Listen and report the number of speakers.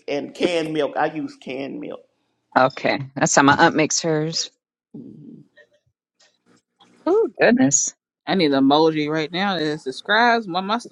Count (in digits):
3